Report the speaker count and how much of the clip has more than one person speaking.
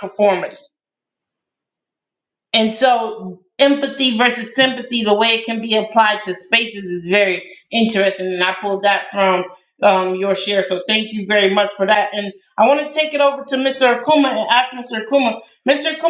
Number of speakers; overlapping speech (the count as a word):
one, no overlap